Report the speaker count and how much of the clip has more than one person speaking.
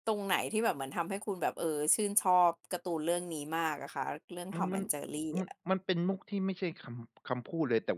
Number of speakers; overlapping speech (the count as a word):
two, about 7%